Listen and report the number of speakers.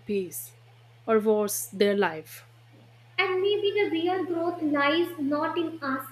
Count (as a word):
two